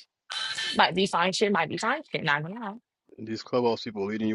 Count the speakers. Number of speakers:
2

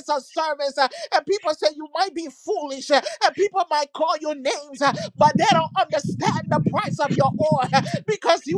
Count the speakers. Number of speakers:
1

